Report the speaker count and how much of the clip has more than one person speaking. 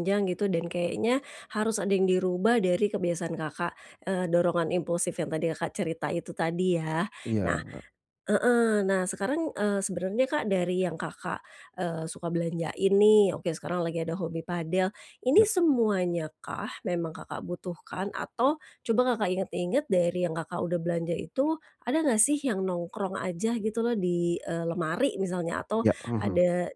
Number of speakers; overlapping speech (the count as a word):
two, about 4%